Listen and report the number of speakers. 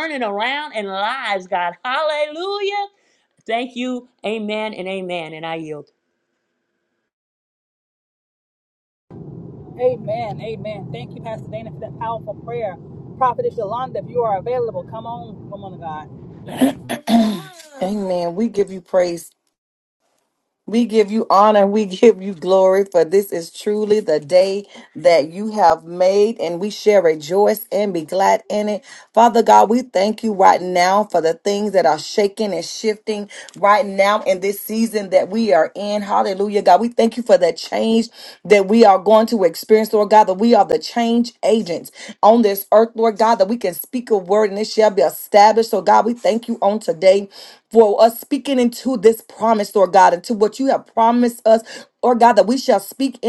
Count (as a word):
three